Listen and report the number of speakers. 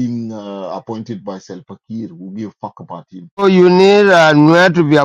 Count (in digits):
2